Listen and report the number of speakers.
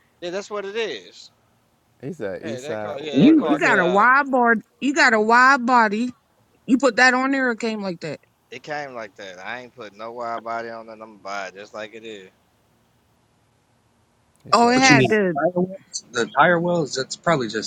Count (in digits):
4